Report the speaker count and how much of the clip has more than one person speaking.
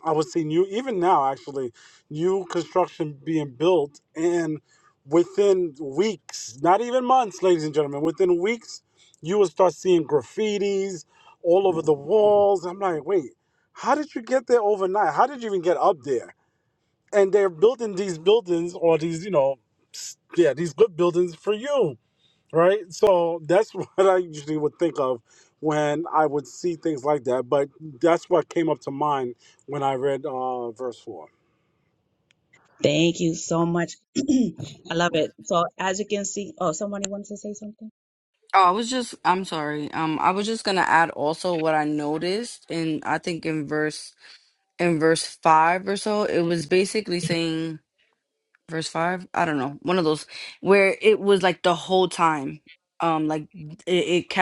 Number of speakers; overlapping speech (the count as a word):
three, no overlap